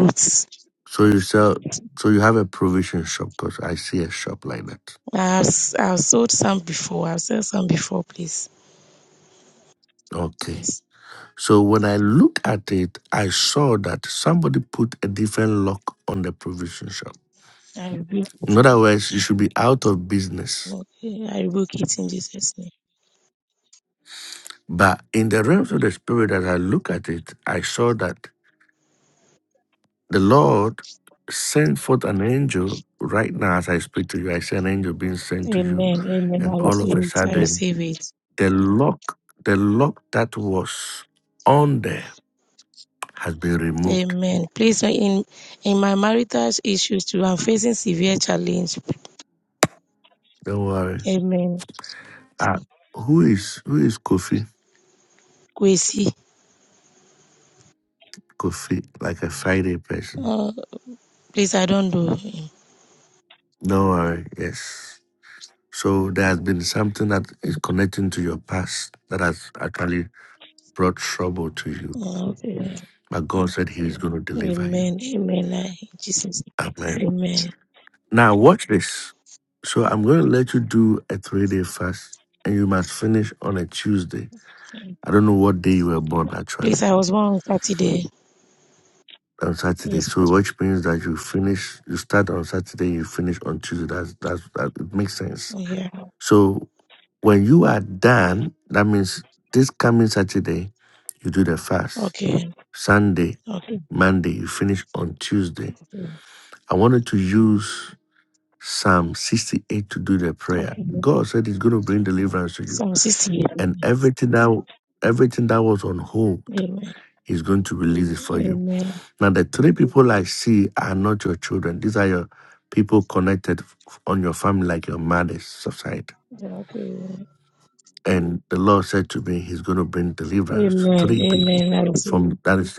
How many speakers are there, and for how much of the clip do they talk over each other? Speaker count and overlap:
2, about 4%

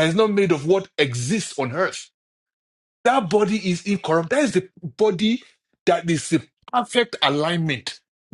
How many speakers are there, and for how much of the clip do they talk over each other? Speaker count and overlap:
1, no overlap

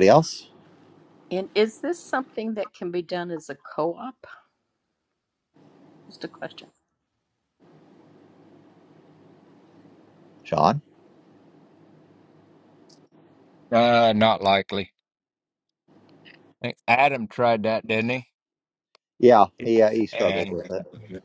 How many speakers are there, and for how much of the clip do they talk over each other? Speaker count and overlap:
3, about 2%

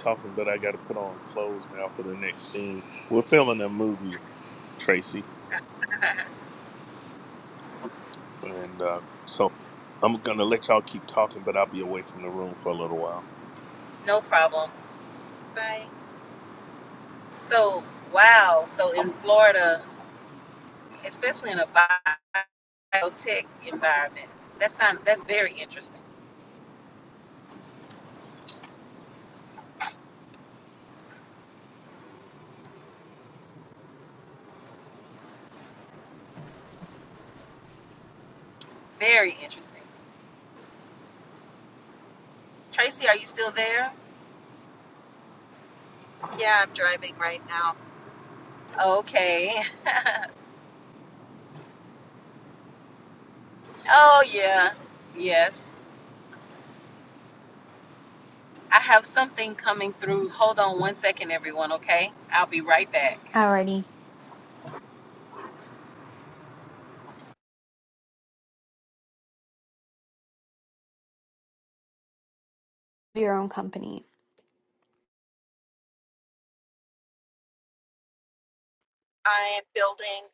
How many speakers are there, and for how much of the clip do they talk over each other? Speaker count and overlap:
4, no overlap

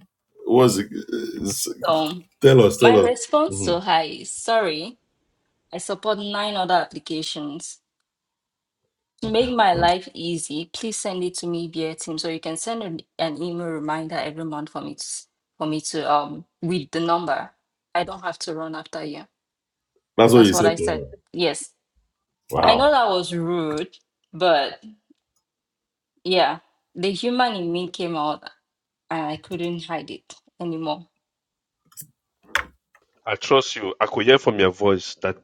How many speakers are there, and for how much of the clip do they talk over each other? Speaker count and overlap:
3, about 4%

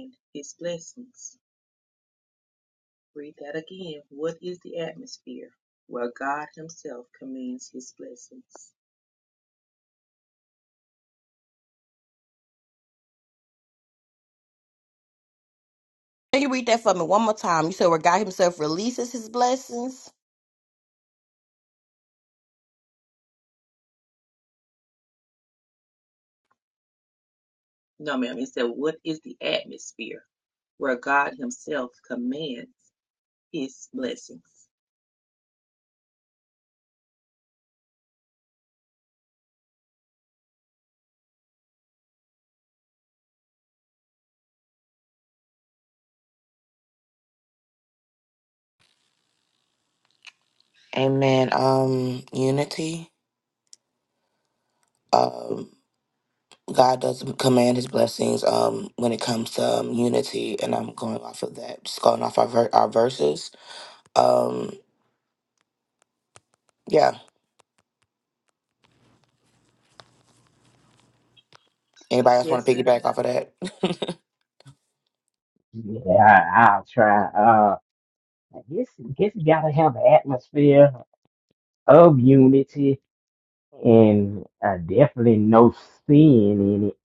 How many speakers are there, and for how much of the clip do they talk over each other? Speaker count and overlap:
4, under 1%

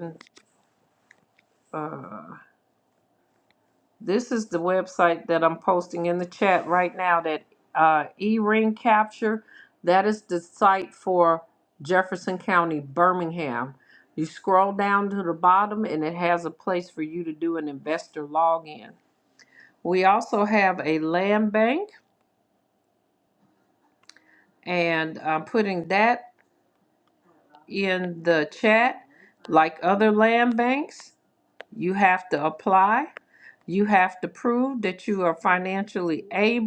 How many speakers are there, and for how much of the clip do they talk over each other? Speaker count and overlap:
1, no overlap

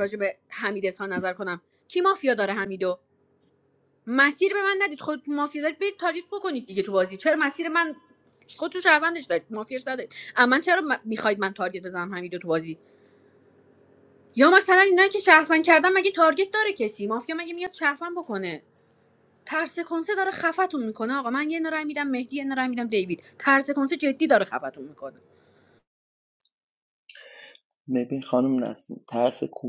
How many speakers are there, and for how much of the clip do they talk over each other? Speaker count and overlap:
2, no overlap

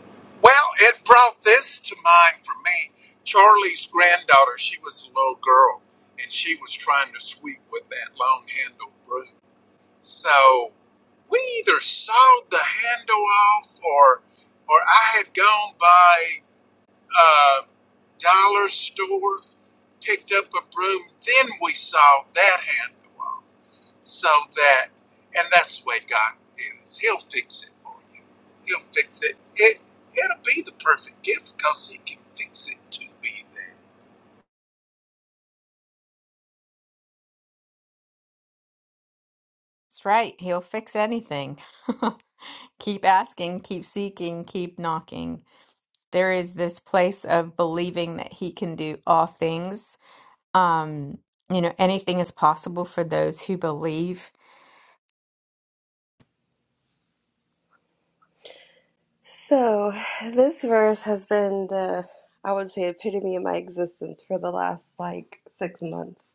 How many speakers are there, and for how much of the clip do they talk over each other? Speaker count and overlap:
3, no overlap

